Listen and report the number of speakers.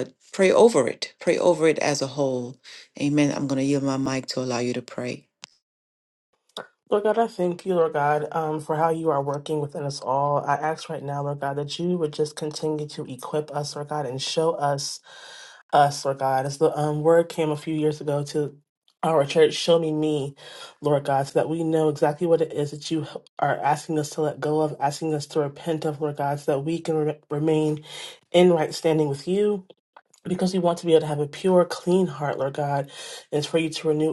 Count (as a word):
two